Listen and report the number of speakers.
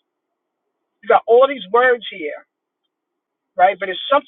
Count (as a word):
one